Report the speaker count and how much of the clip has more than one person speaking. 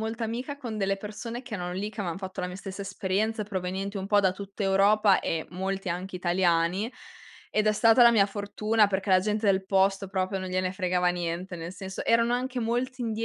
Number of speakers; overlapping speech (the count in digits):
1, no overlap